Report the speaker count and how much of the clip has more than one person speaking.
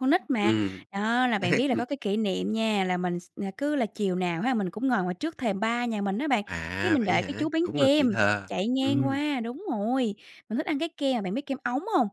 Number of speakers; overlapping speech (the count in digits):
2, about 16%